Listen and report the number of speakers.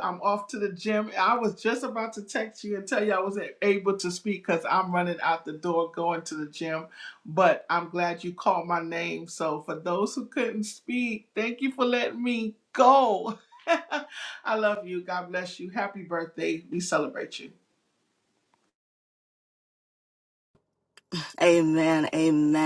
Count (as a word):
two